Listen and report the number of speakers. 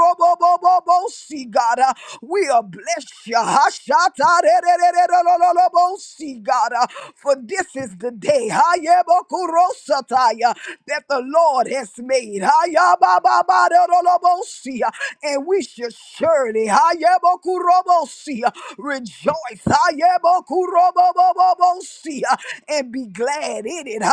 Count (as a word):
one